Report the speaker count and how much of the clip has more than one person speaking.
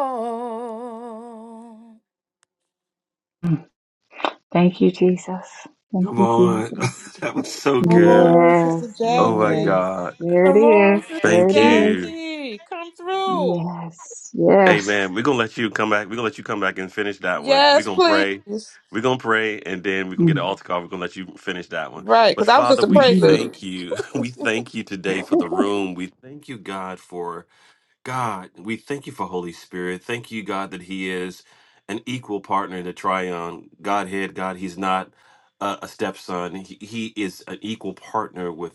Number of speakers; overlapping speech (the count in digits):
4, about 20%